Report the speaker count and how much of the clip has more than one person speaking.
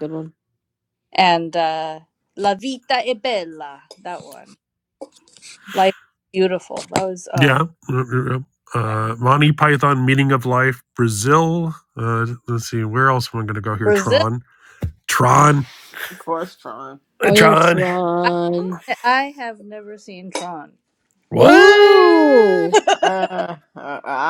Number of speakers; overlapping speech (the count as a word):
four, about 10%